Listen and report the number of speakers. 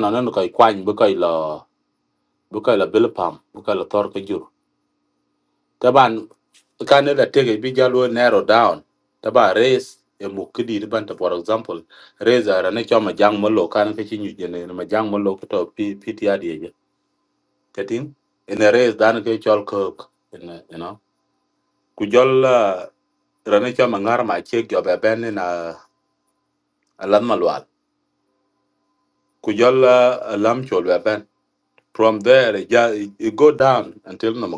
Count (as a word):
one